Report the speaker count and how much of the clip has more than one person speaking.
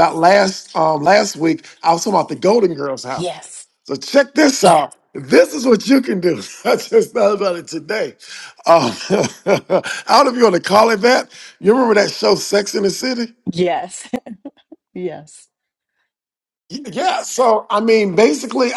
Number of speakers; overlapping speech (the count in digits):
2, under 1%